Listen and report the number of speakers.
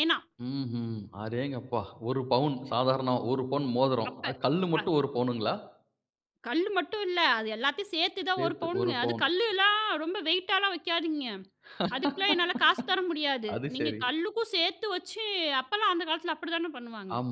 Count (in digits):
2